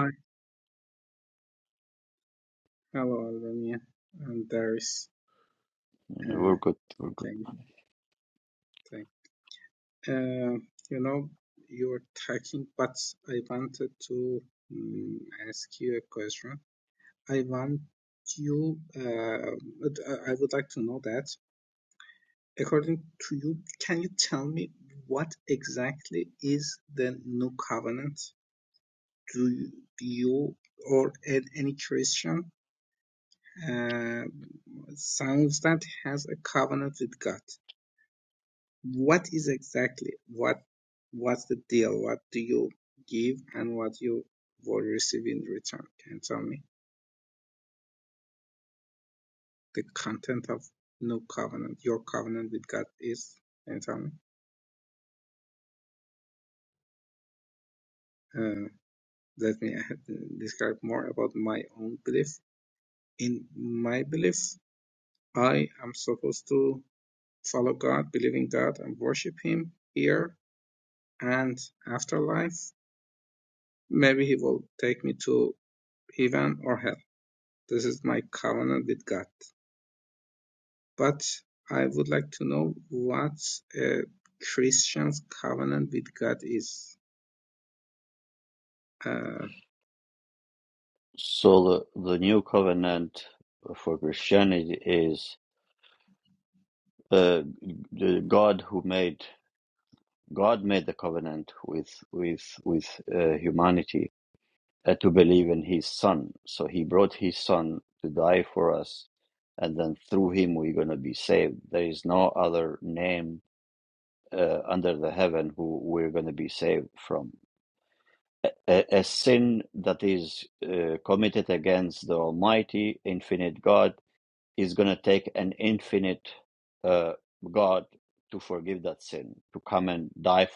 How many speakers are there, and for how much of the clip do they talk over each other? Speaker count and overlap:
2, under 1%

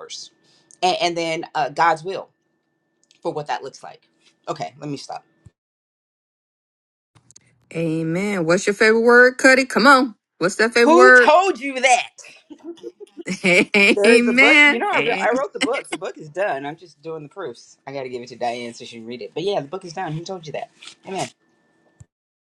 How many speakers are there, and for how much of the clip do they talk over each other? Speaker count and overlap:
2, about 7%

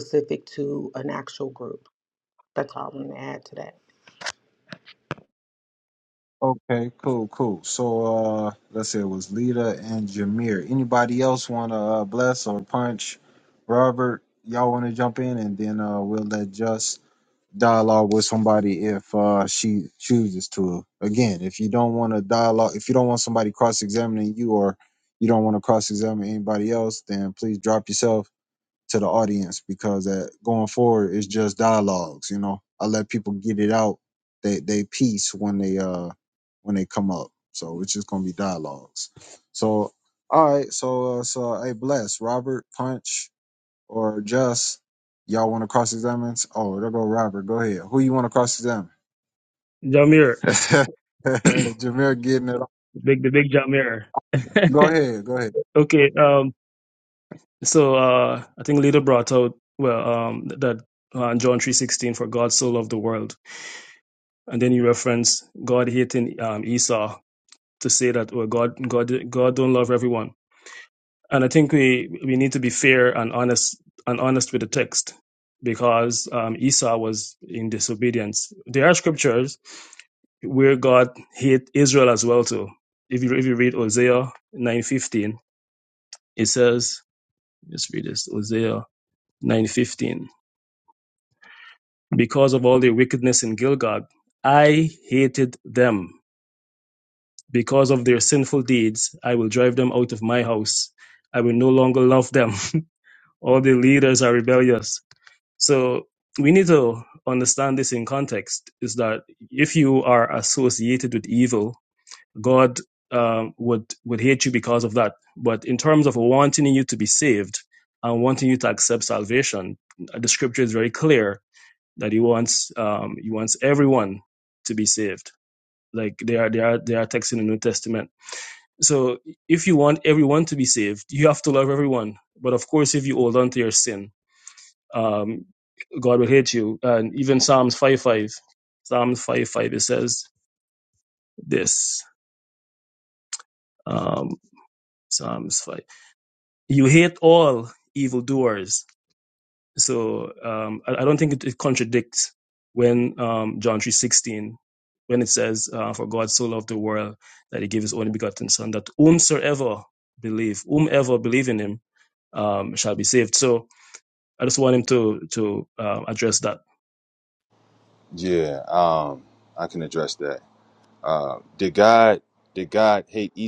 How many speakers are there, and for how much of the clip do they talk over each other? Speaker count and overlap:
4, no overlap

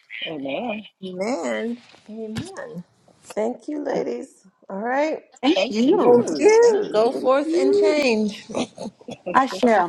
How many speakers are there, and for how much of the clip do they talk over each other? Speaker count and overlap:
4, about 25%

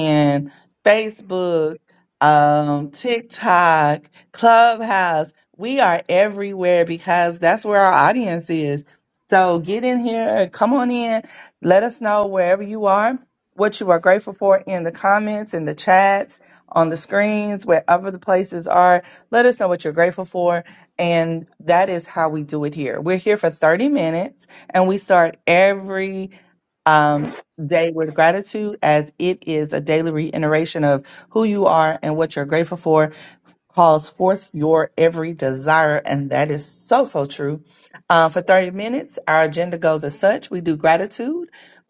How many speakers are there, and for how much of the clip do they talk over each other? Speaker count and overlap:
1, no overlap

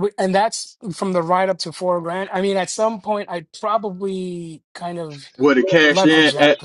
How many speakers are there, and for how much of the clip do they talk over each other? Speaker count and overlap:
2, about 11%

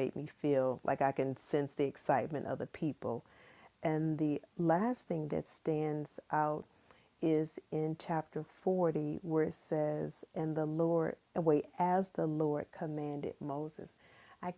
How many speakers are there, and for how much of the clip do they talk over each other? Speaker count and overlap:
1, no overlap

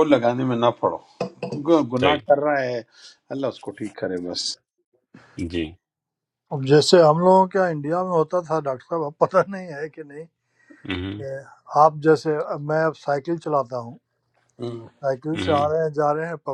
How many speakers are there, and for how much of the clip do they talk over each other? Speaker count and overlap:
3, about 3%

